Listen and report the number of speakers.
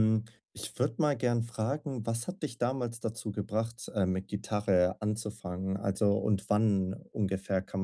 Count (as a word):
one